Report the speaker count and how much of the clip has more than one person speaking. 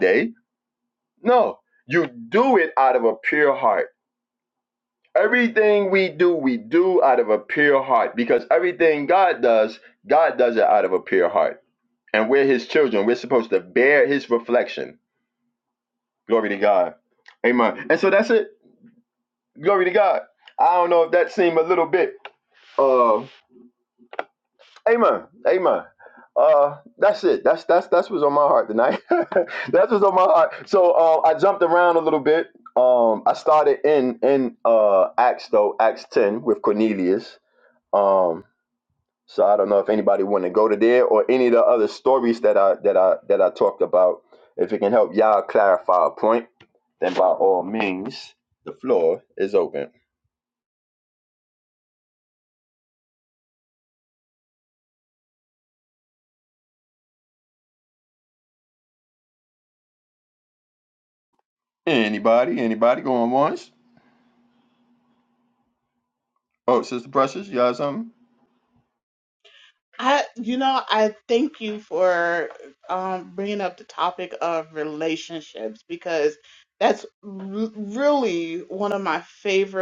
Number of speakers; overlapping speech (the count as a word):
two, no overlap